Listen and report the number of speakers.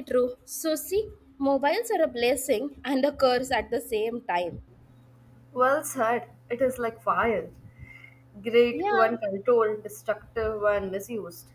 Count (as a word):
two